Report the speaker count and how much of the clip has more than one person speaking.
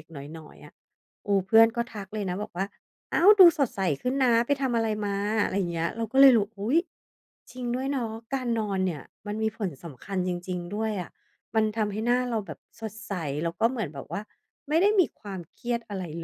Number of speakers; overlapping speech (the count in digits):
1, no overlap